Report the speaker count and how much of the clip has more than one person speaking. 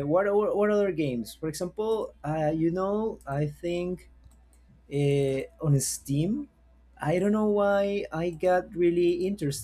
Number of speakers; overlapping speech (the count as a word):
one, no overlap